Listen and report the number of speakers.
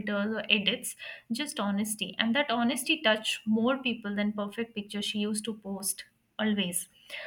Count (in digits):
1